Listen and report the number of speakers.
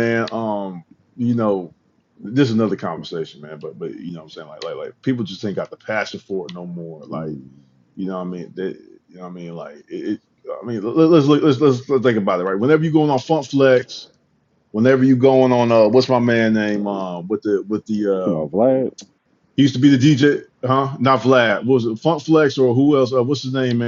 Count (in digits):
2